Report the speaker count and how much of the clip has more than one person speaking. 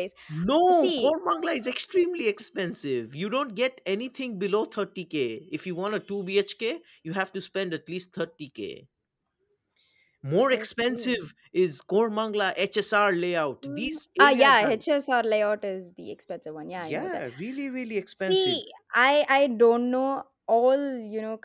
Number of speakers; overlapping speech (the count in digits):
2, about 14%